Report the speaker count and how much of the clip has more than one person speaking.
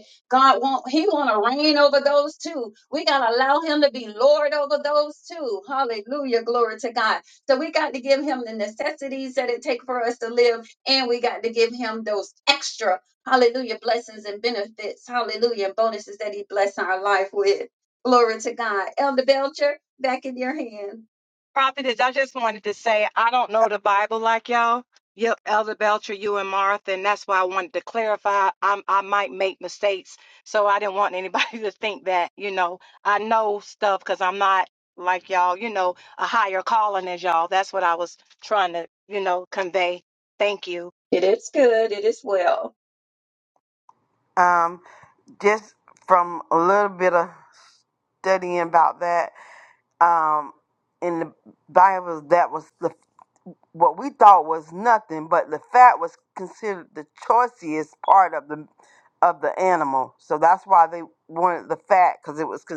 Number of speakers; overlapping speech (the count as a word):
three, no overlap